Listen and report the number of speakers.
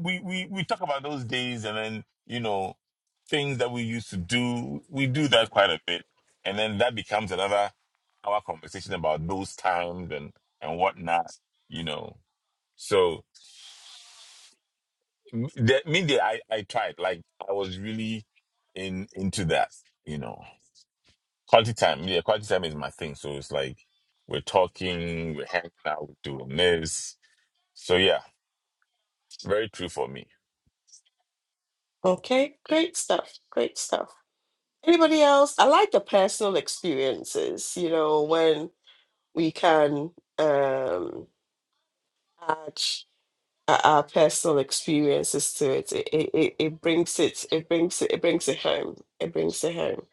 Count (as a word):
two